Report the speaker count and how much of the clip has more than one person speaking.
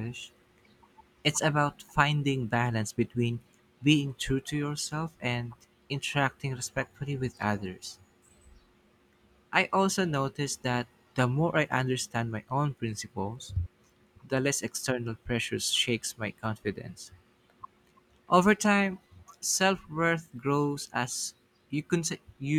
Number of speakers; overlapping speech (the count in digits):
1, no overlap